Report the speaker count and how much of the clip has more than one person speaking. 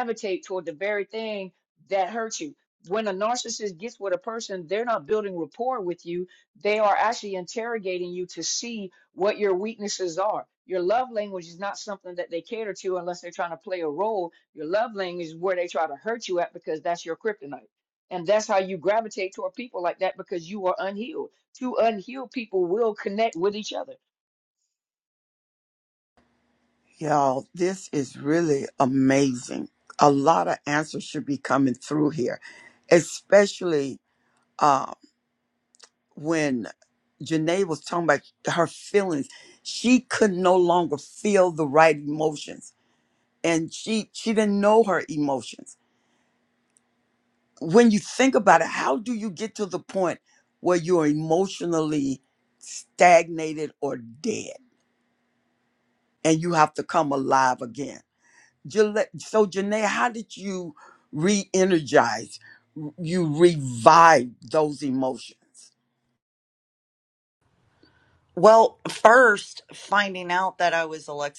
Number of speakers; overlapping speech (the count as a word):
three, no overlap